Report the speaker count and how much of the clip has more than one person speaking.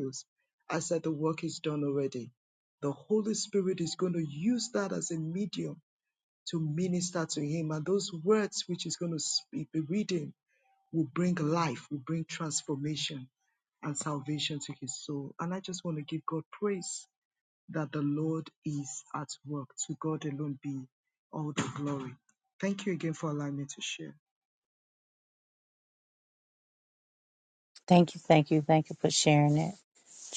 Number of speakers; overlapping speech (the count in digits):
2, no overlap